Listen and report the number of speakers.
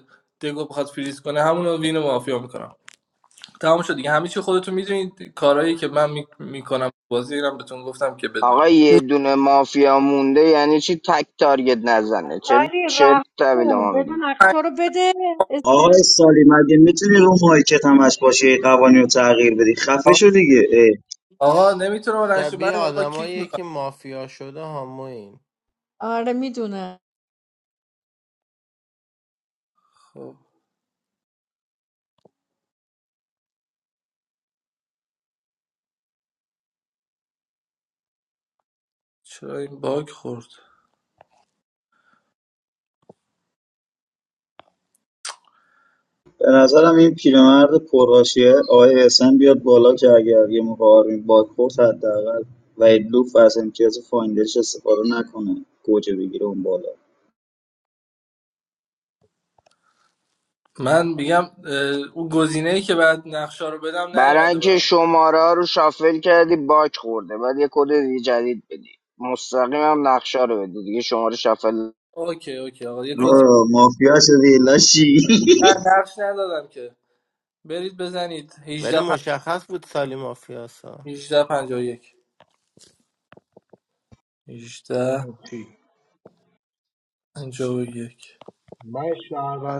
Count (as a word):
six